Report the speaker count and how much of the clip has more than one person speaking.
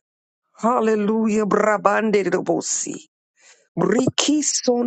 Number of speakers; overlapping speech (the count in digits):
1, no overlap